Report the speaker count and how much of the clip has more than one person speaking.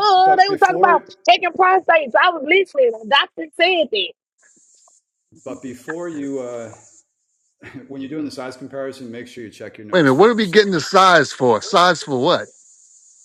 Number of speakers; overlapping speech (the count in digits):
3, about 12%